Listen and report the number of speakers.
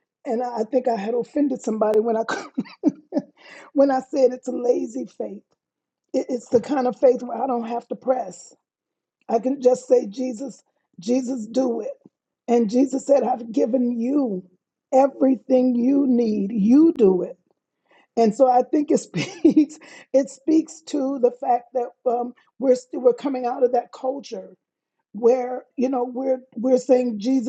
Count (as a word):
one